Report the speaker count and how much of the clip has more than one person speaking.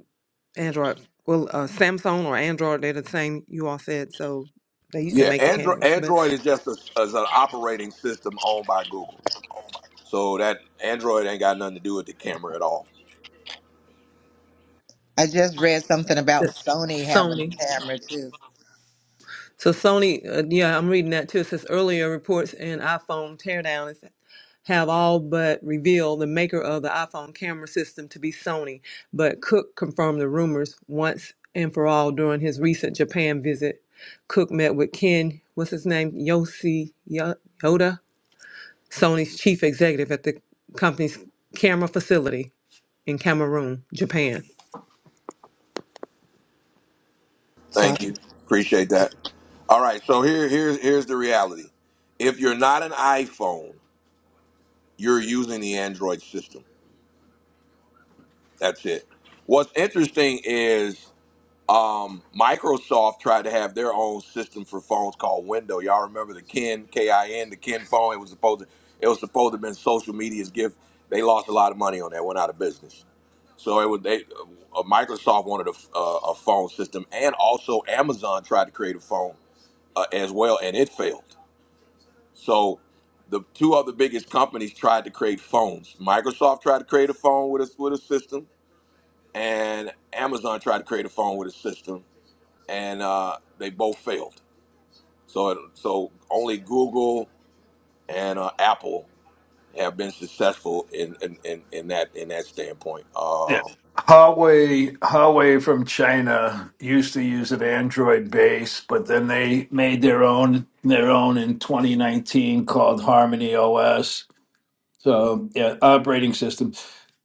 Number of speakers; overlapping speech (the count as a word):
four, about 2%